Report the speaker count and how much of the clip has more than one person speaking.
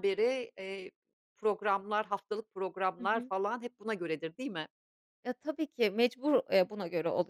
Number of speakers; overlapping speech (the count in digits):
2, about 4%